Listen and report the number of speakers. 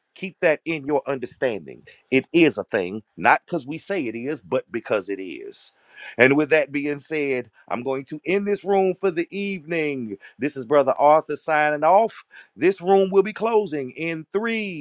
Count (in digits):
1